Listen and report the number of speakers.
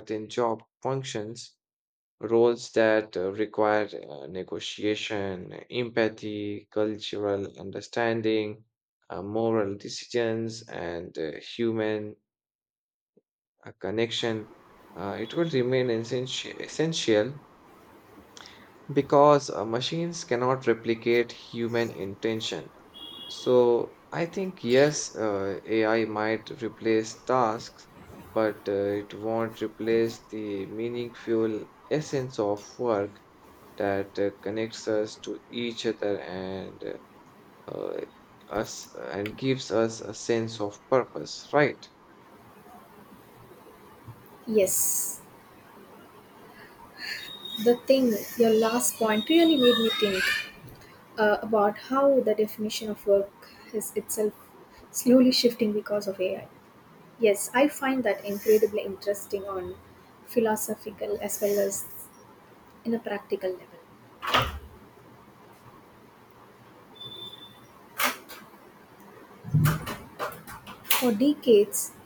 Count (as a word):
two